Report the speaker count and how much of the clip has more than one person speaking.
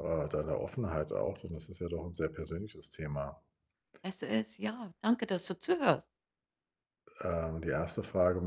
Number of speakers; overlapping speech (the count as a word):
two, no overlap